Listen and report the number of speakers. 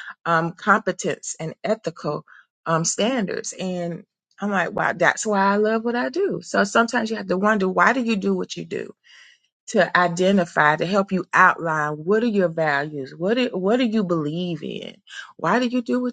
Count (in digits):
1